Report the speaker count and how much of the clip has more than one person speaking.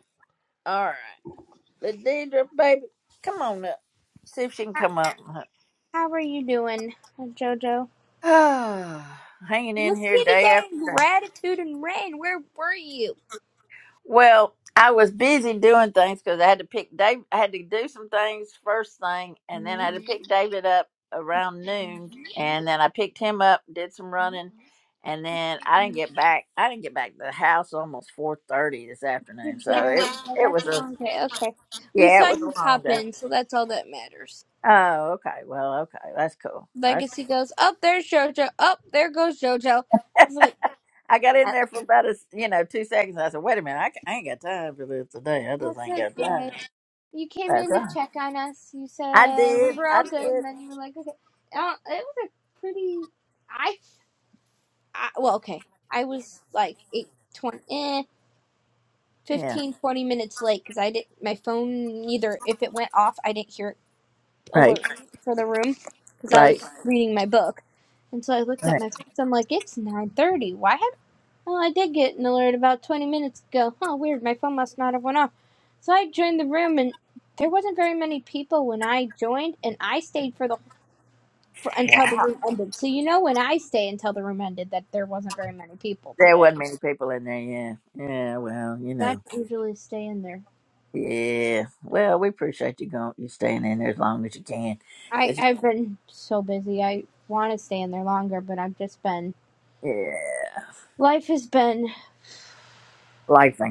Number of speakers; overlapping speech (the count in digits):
2, about 9%